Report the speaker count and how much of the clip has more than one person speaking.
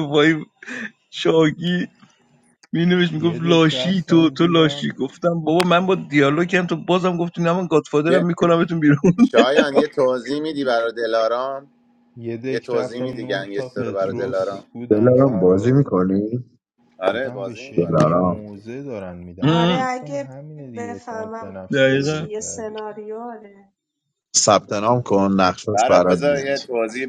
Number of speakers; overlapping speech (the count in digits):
5, about 37%